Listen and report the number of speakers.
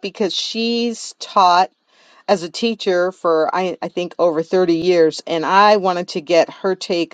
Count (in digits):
1